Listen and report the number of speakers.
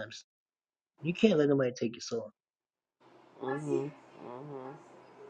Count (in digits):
2